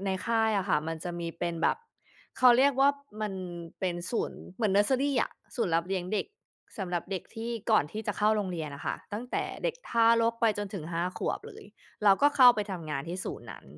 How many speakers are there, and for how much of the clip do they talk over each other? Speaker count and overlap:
one, no overlap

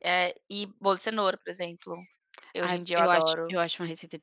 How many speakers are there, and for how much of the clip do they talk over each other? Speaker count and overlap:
two, about 22%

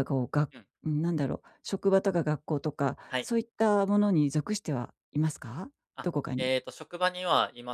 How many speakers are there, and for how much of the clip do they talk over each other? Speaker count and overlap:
two, about 4%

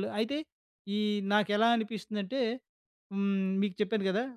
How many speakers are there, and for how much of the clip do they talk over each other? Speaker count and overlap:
one, no overlap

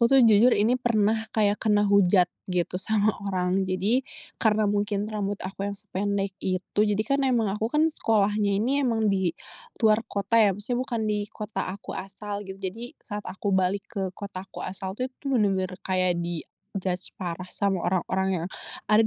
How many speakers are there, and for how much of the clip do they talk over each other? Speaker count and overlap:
one, no overlap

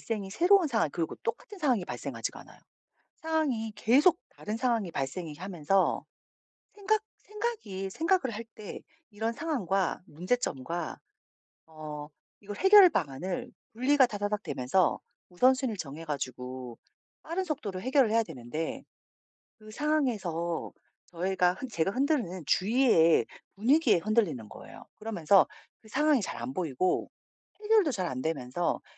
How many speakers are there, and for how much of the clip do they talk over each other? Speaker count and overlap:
one, no overlap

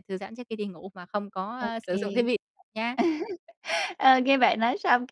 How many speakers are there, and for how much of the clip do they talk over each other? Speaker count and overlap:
two, about 8%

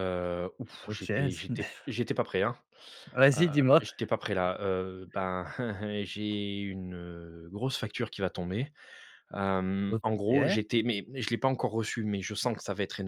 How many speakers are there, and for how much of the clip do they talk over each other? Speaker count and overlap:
two, about 8%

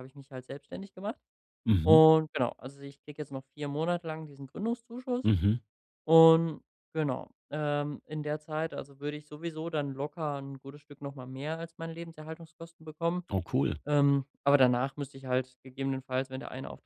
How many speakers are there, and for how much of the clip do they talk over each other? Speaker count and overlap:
two, about 1%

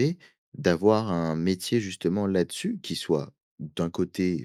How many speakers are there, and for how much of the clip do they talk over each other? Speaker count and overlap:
one, no overlap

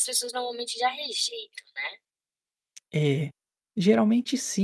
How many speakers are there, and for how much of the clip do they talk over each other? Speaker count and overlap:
two, no overlap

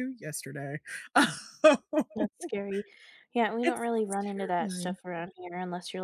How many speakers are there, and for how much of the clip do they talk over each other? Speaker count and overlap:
two, about 14%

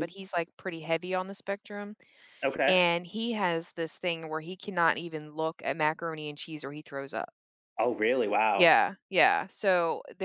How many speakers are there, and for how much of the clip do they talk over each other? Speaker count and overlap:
two, about 4%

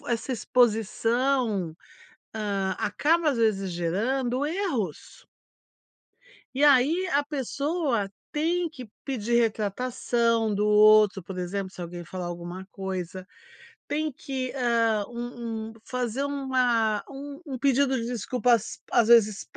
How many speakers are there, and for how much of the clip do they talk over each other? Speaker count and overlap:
one, no overlap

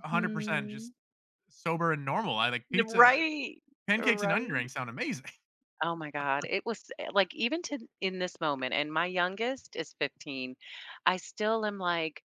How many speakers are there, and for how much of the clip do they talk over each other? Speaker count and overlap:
two, about 16%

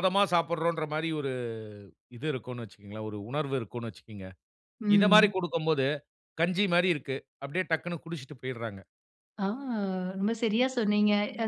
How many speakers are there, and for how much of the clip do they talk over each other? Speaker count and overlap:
two, about 3%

